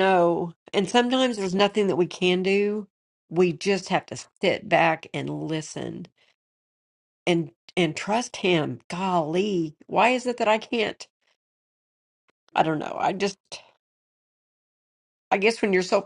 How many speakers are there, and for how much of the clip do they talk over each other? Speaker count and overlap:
1, no overlap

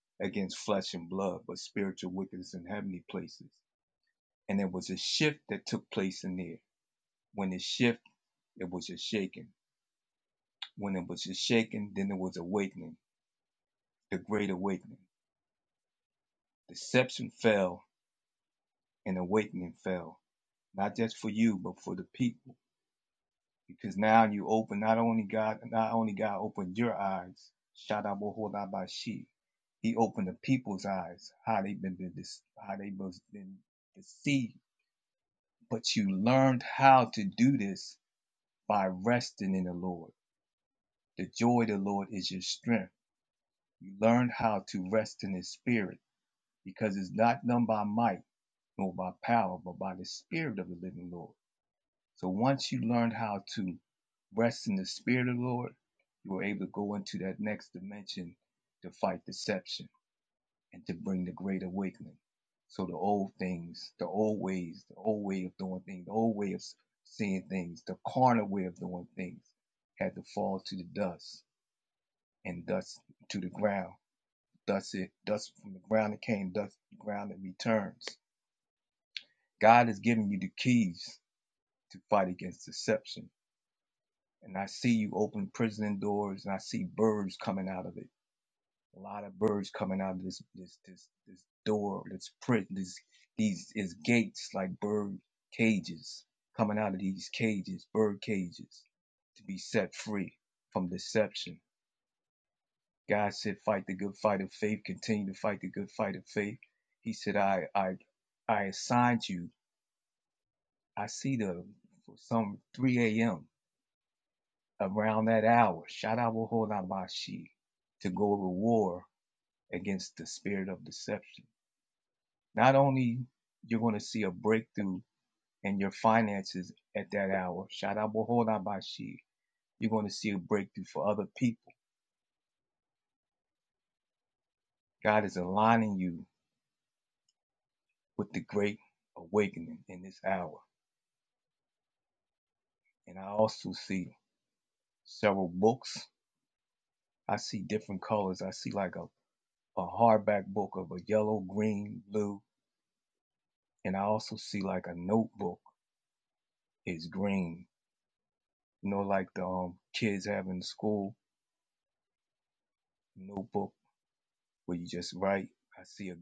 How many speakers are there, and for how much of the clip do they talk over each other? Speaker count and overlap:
1, no overlap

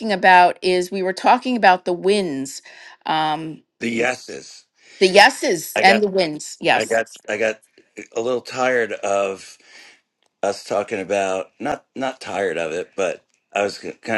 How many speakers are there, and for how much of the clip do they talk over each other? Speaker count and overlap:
2, about 3%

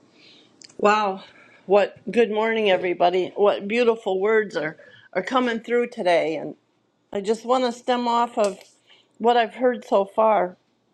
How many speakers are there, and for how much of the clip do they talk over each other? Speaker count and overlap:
1, no overlap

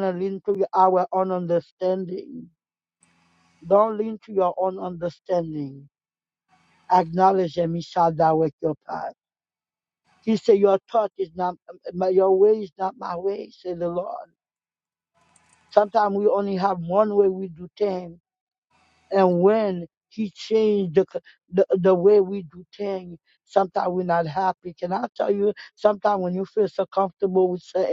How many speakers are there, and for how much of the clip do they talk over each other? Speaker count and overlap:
1, no overlap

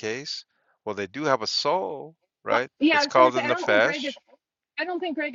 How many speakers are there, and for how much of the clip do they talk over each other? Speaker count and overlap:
2, about 30%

